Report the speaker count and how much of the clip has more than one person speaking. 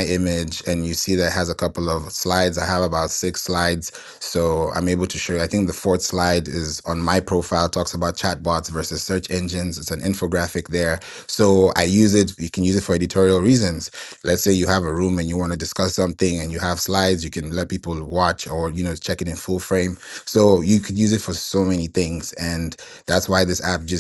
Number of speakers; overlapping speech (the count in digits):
1, no overlap